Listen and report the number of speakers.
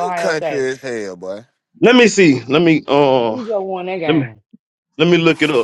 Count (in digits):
3